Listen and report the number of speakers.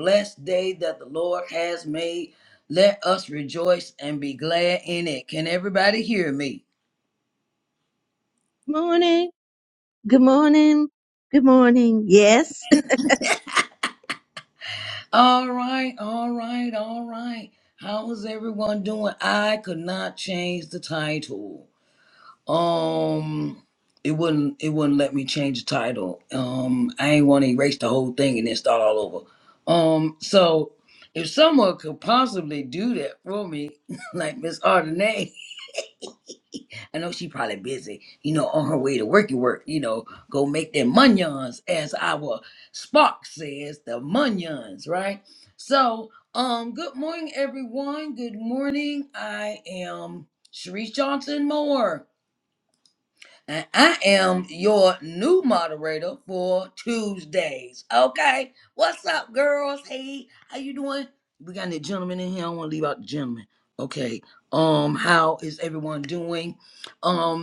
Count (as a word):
two